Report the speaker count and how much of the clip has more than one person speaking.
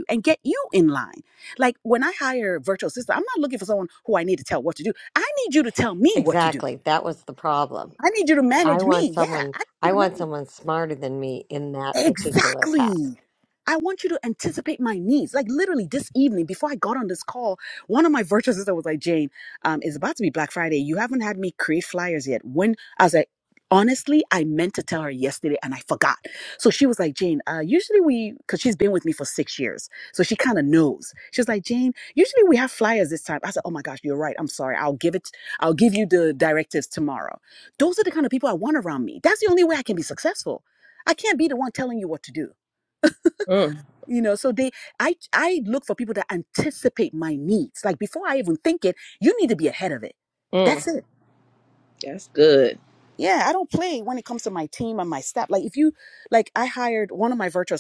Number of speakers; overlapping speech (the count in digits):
3, about 6%